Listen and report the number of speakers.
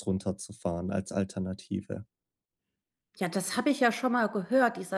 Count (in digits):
2